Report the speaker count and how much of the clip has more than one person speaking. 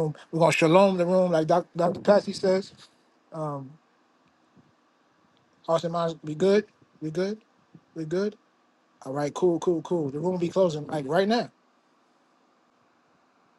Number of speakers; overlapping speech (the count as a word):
one, no overlap